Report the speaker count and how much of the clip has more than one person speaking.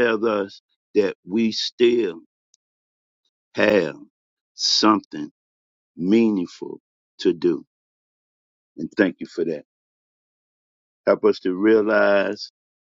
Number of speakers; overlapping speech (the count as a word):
one, no overlap